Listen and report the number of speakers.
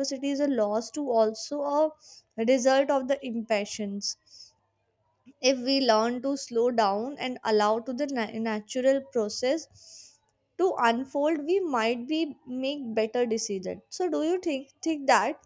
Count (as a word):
one